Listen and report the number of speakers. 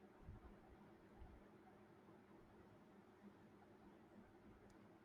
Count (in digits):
0